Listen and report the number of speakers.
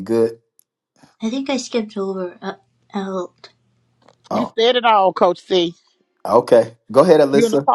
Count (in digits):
3